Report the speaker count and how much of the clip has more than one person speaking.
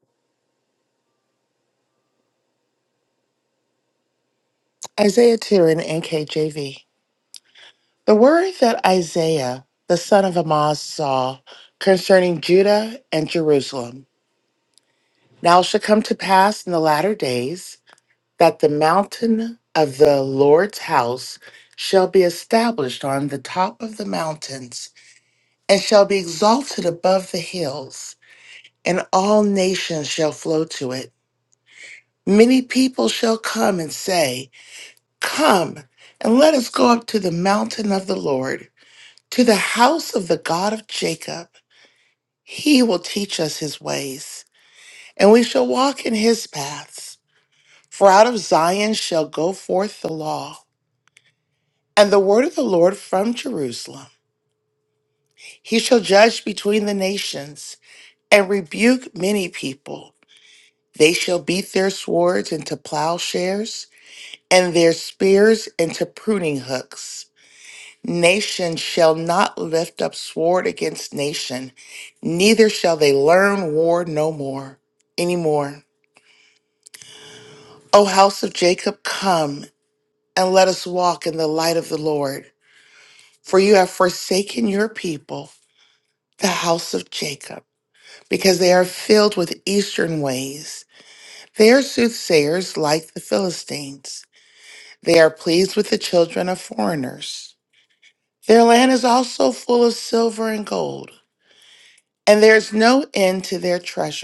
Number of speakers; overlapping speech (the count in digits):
1, no overlap